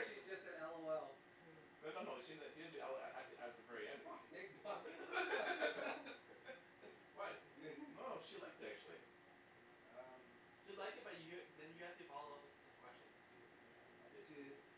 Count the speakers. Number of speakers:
three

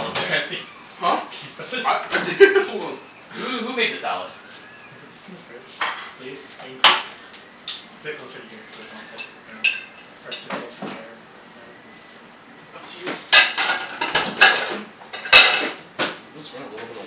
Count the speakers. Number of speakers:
three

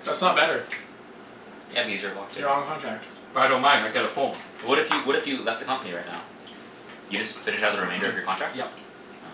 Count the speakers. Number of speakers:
three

